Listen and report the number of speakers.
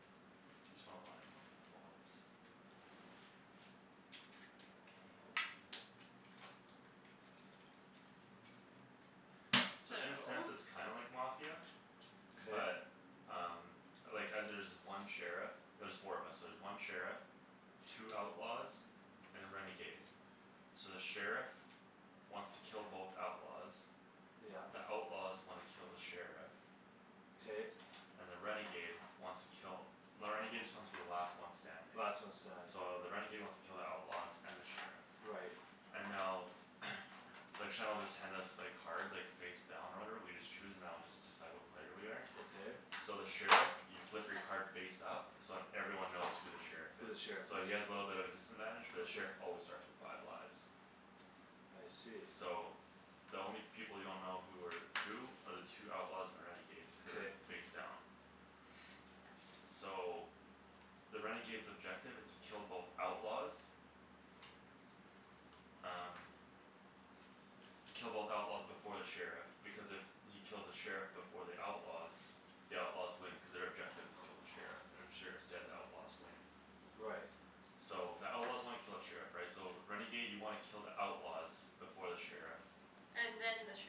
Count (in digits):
3